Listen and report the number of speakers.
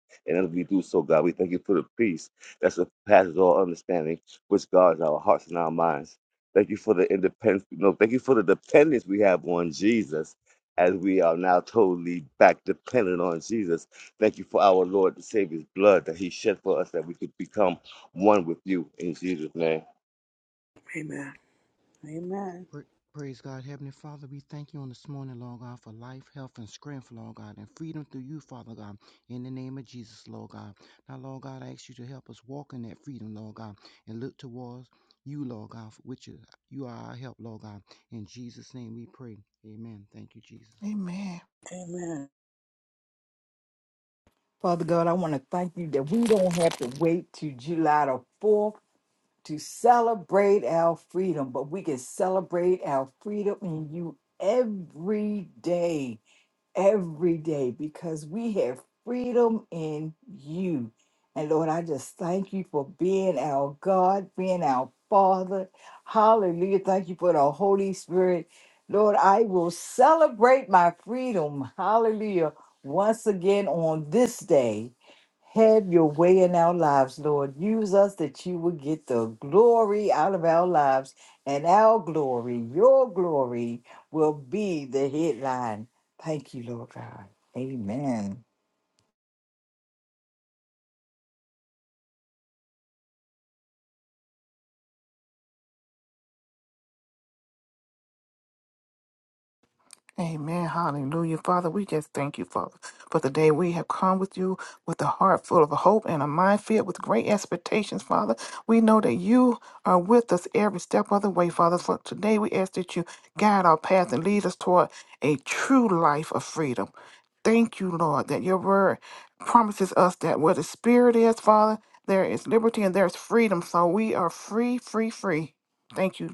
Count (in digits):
5